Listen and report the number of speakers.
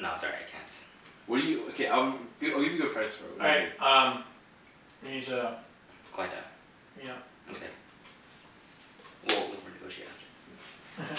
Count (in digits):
3